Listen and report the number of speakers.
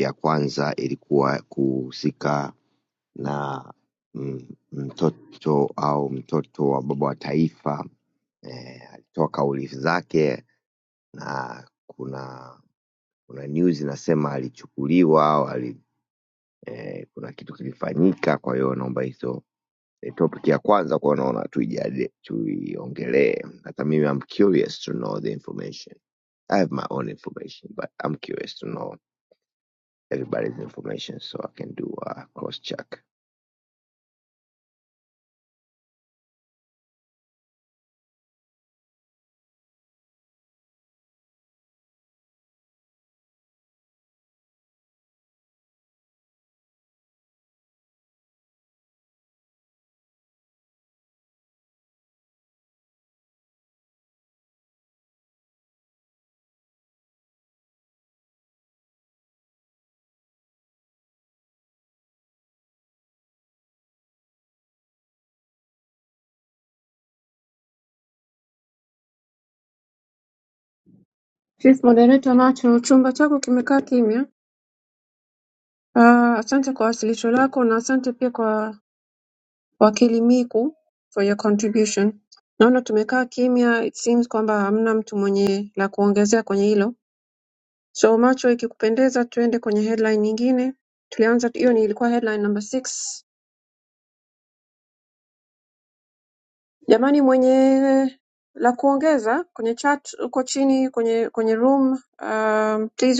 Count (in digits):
2